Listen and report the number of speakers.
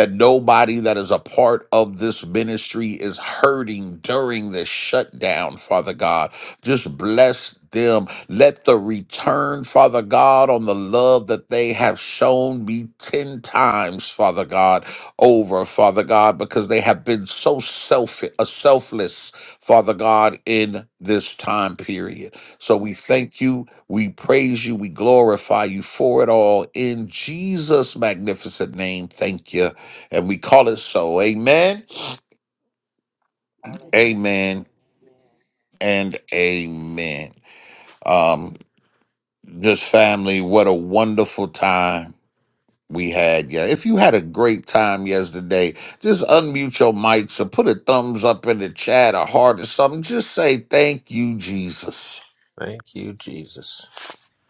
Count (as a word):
two